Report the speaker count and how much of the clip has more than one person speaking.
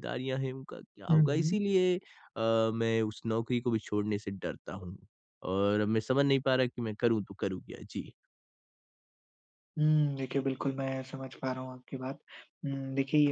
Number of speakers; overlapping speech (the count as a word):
two, about 4%